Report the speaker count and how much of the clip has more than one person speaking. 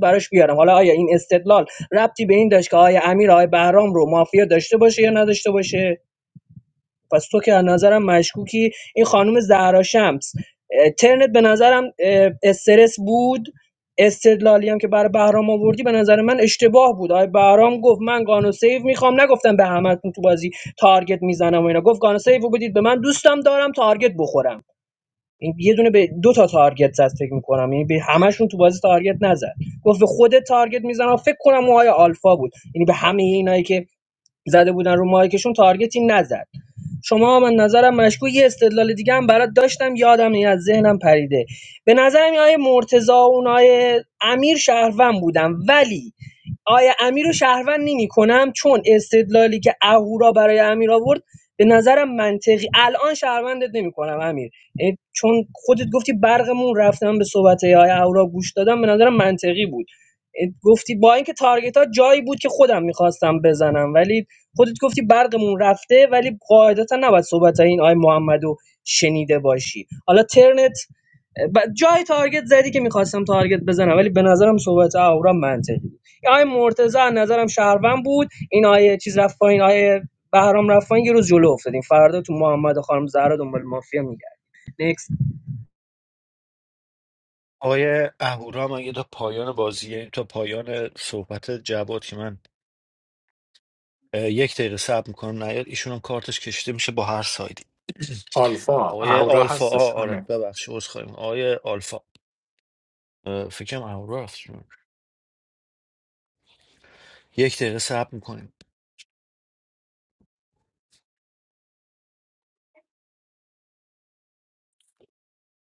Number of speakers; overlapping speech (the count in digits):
3, about 1%